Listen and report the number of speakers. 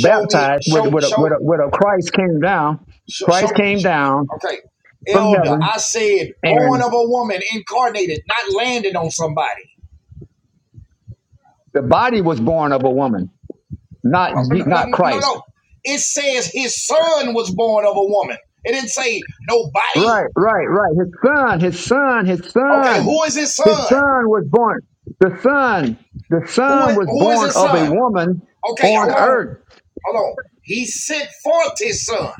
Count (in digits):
2